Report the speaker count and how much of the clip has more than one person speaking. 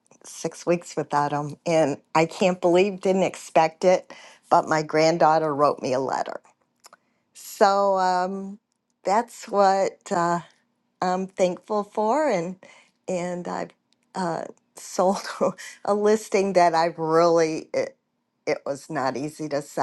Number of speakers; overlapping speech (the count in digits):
1, no overlap